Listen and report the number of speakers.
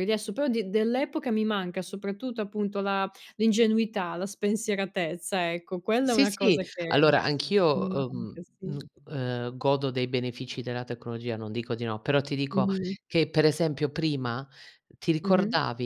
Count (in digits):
2